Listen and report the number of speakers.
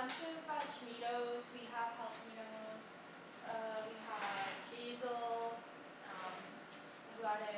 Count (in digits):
1